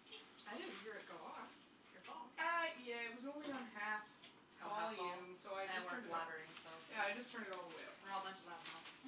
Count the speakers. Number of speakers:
2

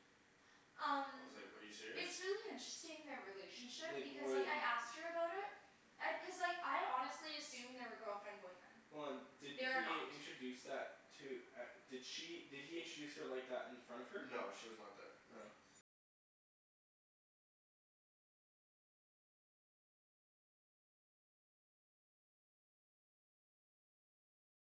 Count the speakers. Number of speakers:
3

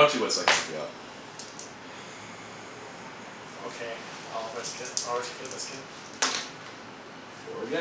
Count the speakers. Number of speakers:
2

